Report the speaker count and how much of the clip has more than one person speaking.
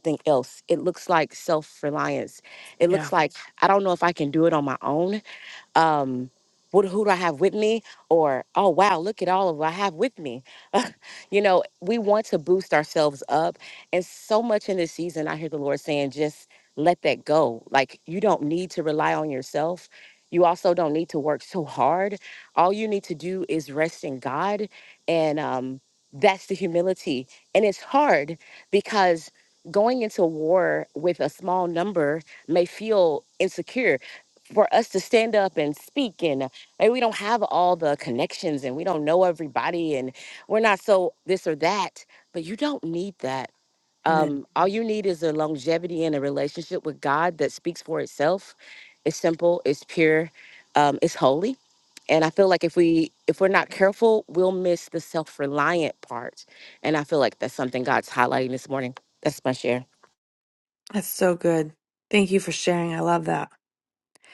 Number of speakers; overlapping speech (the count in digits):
2, about 1%